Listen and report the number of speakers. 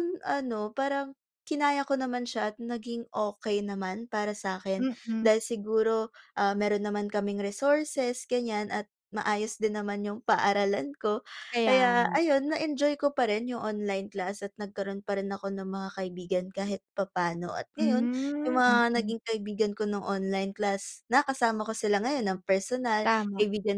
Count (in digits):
2